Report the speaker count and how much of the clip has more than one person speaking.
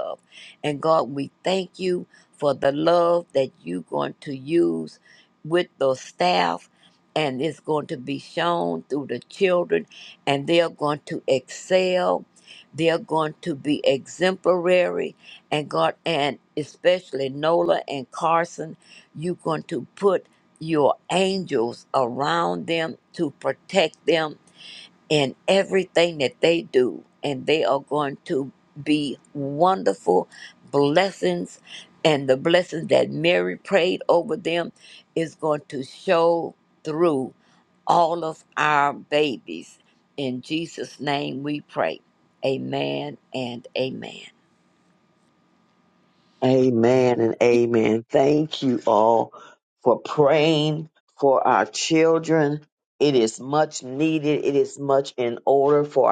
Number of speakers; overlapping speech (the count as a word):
two, no overlap